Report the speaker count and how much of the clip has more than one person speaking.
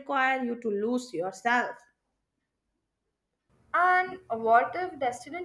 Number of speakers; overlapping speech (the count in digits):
2, no overlap